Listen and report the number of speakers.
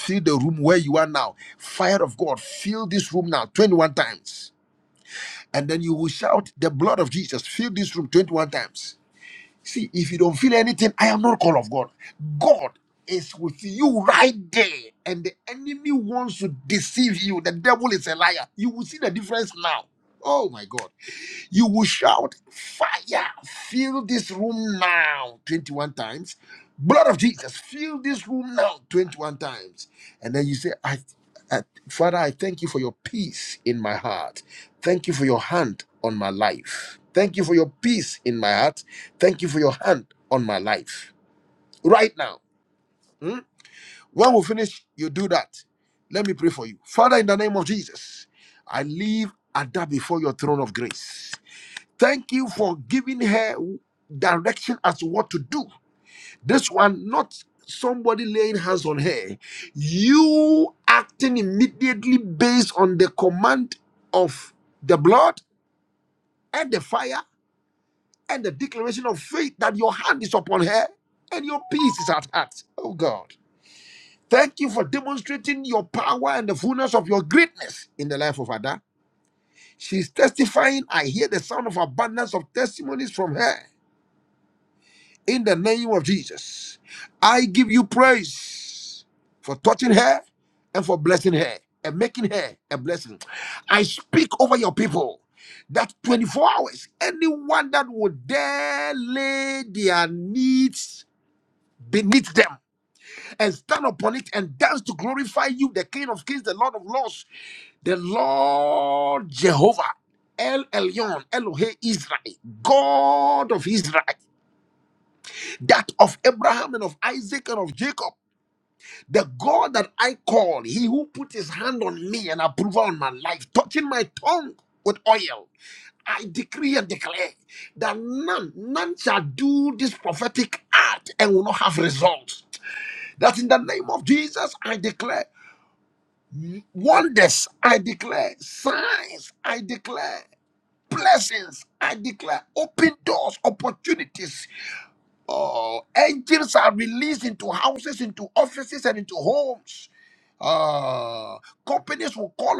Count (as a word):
one